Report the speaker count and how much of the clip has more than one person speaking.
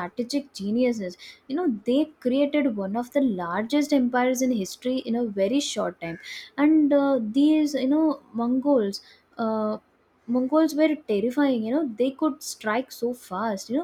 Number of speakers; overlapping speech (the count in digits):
1, no overlap